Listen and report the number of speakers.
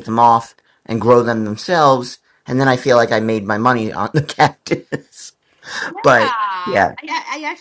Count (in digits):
2